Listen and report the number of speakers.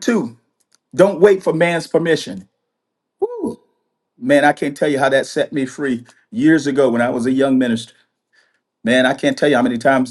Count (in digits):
1